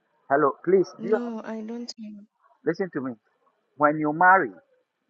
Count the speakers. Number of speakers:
two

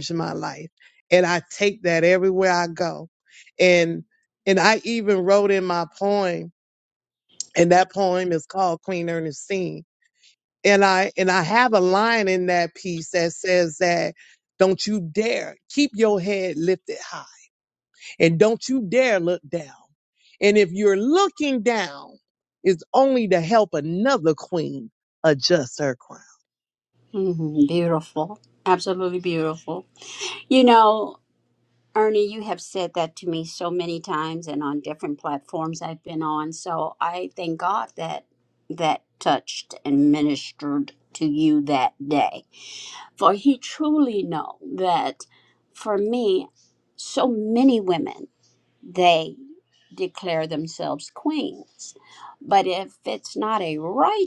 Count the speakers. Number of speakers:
two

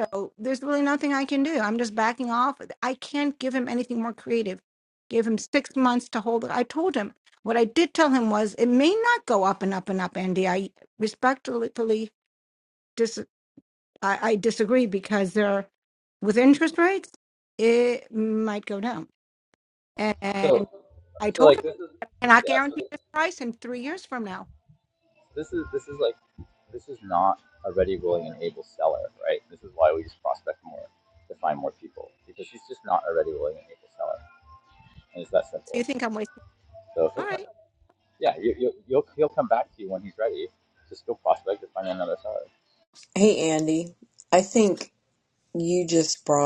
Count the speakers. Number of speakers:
three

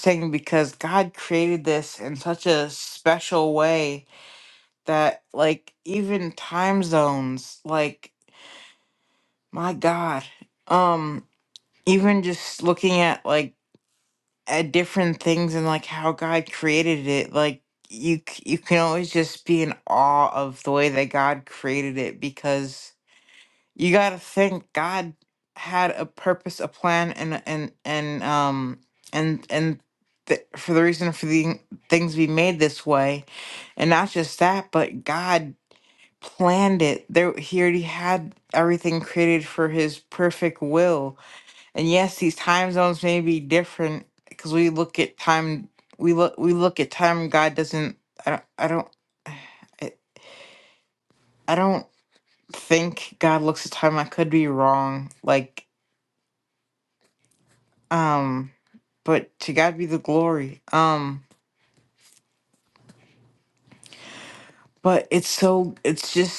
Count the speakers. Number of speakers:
one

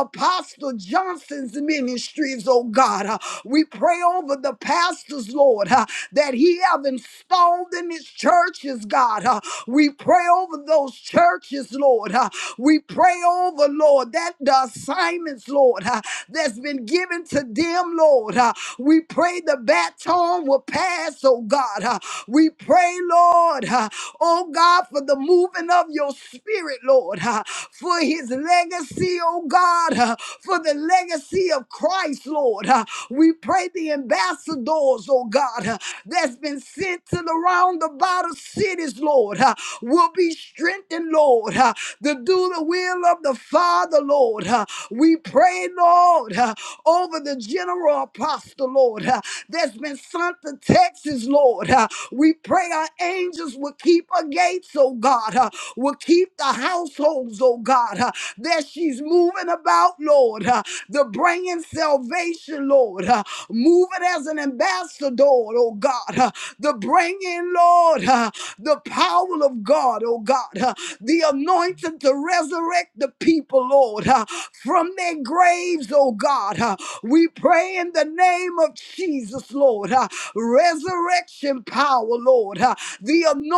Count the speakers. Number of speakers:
one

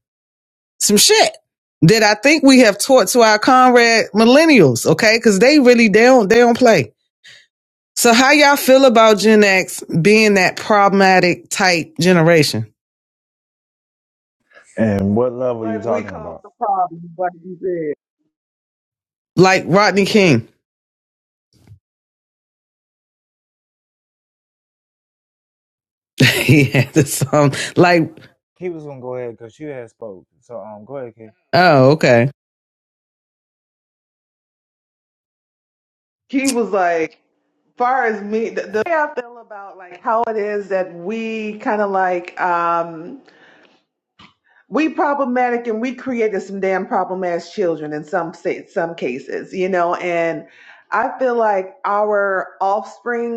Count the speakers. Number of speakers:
three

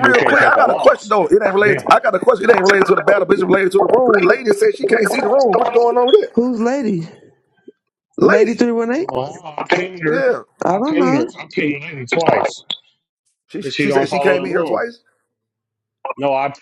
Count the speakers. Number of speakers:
three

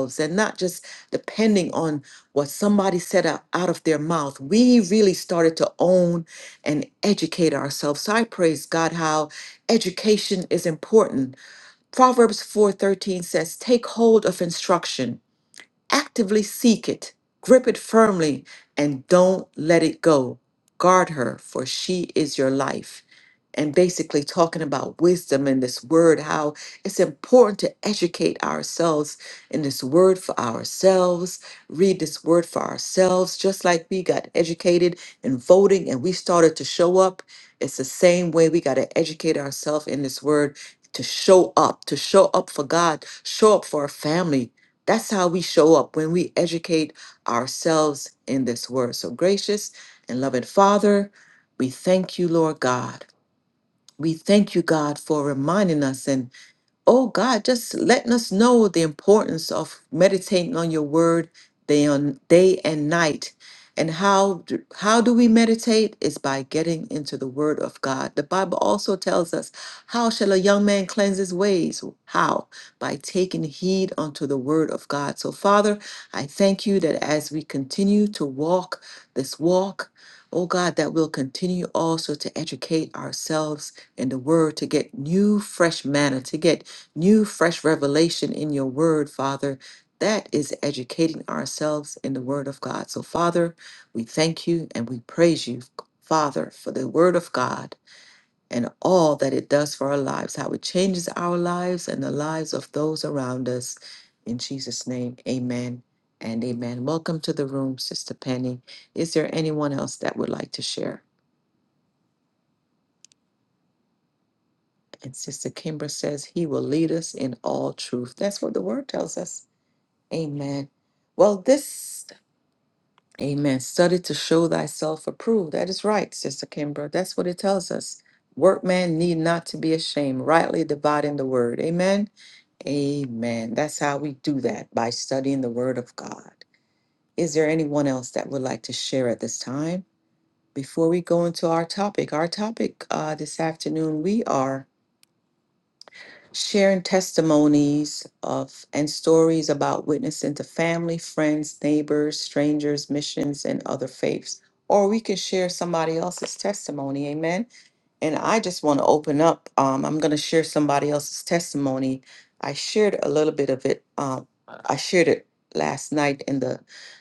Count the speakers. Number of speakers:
one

